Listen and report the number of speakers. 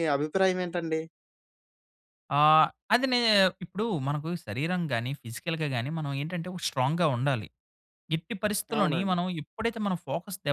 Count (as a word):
two